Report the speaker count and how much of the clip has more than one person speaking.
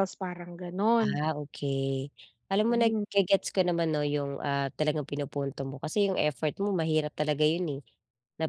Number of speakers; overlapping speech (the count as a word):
two, about 6%